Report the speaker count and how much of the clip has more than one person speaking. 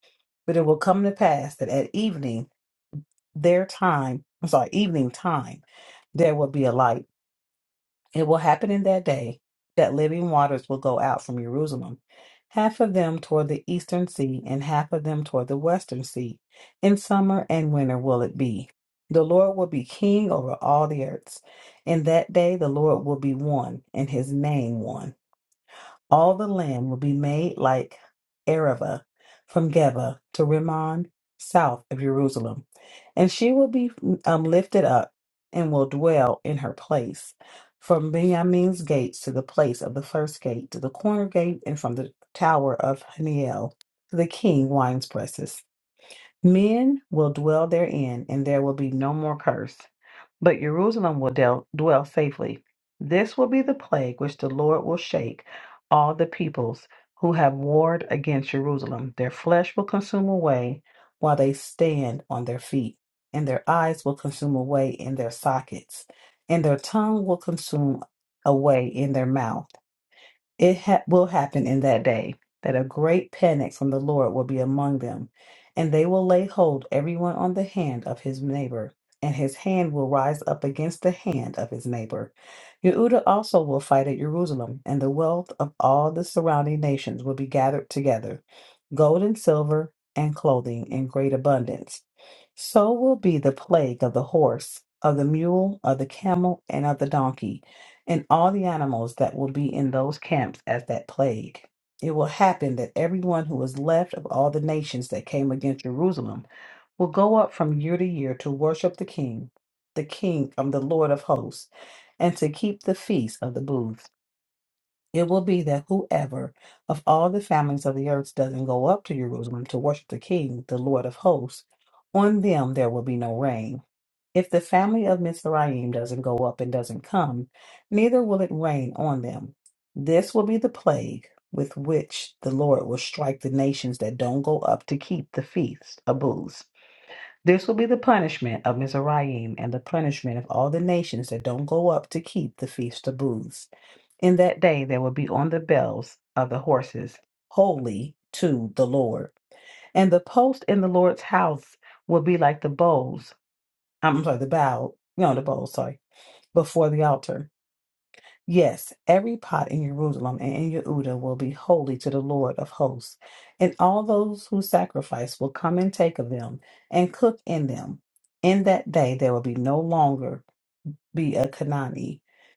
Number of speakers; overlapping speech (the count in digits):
1, no overlap